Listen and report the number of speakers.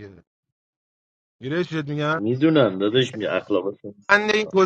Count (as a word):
two